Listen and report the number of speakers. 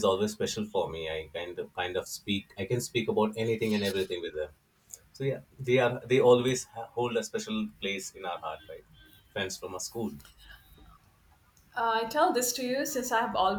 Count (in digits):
2